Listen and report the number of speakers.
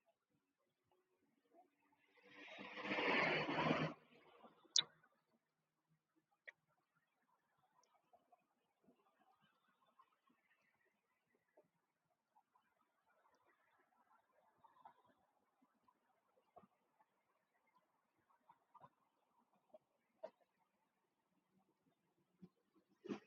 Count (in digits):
0